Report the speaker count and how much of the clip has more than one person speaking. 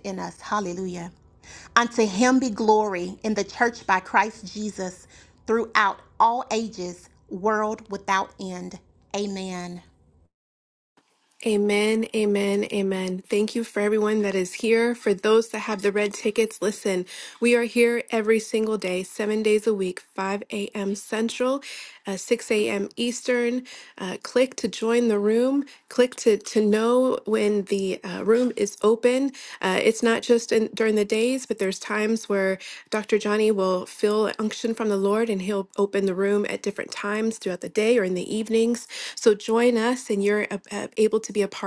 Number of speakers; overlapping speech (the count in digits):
2, no overlap